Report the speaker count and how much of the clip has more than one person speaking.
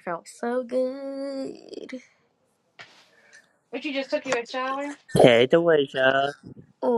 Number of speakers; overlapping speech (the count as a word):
three, no overlap